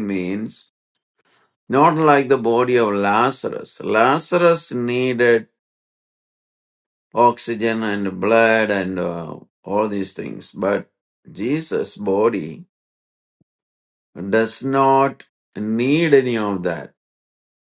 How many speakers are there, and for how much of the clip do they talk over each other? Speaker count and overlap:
1, no overlap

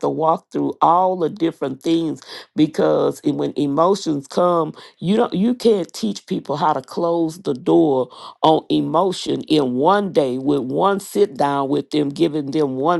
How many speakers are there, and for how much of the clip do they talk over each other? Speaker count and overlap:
1, no overlap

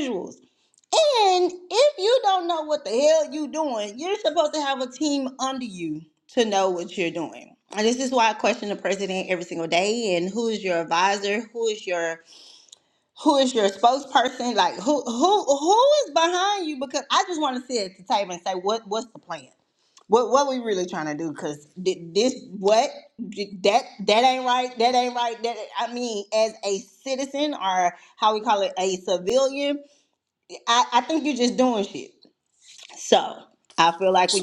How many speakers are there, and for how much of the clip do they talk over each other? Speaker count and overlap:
1, no overlap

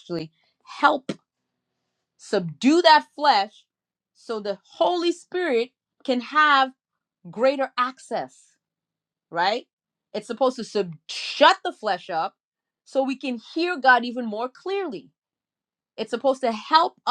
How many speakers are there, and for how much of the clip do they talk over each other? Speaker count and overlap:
1, no overlap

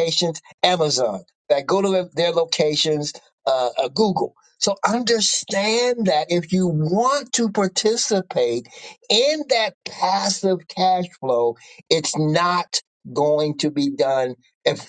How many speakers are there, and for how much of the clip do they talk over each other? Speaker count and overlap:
1, no overlap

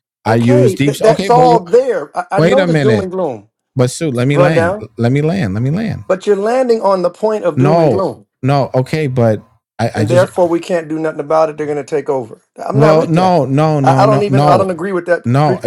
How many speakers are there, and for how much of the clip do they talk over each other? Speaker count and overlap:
2, about 34%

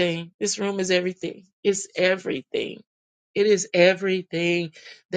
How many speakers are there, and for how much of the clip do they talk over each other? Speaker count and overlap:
1, no overlap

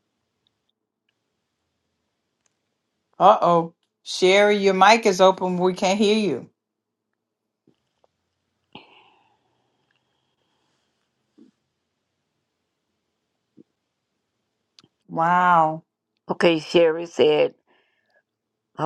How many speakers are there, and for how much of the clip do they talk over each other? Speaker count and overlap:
2, no overlap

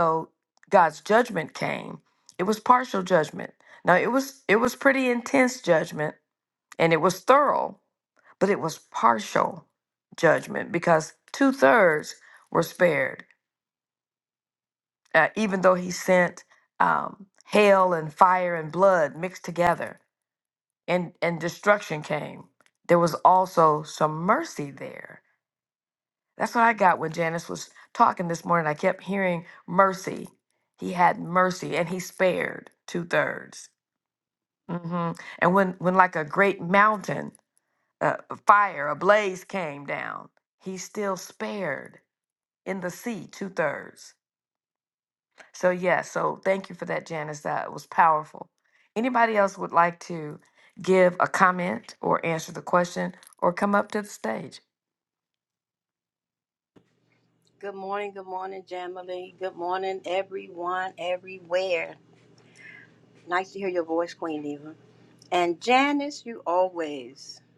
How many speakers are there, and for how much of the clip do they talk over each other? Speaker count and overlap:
2, no overlap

